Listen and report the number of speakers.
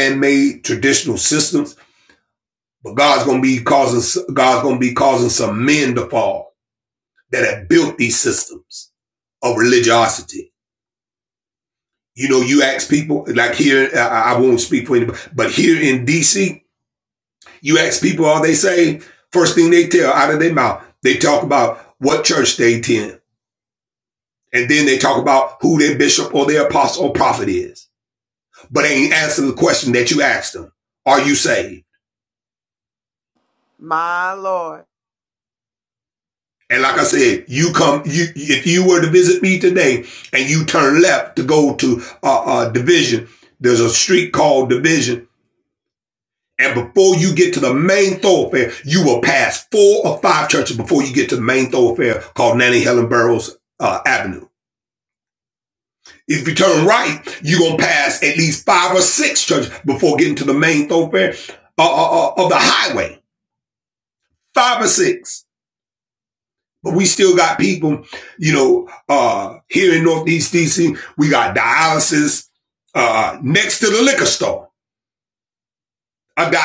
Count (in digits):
2